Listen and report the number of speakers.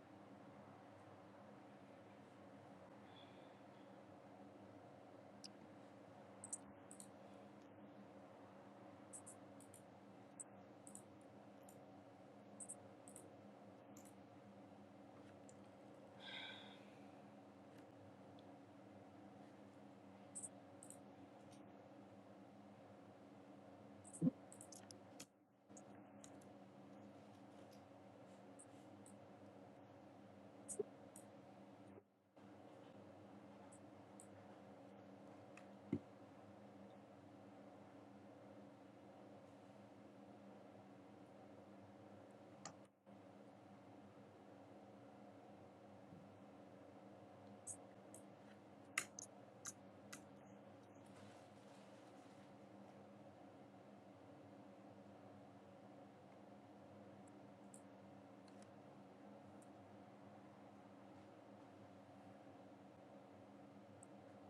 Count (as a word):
zero